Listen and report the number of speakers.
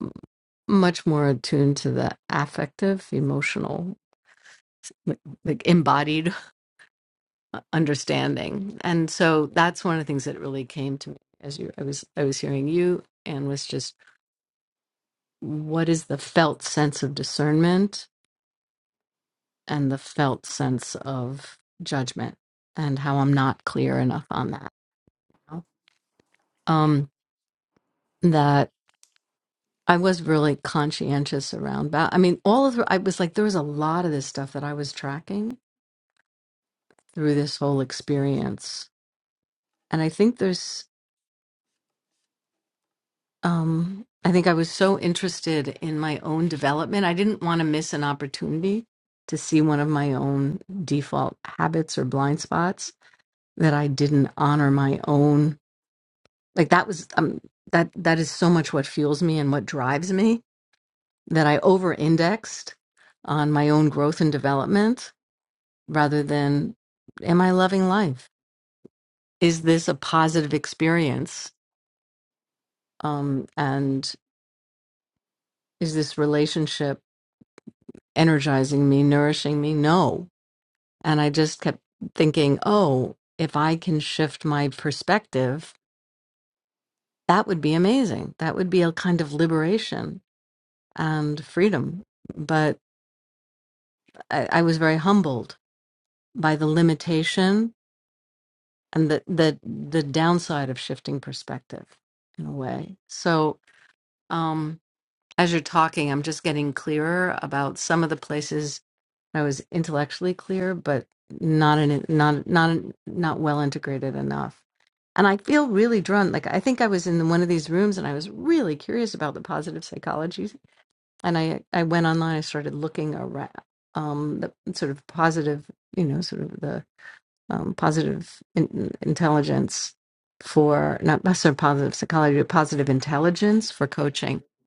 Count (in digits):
1